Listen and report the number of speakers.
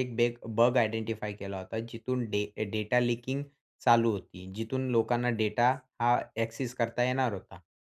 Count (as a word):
one